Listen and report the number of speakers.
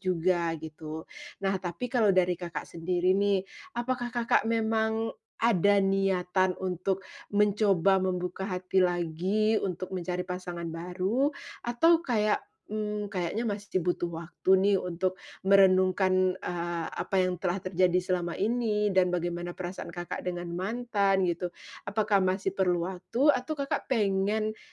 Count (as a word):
one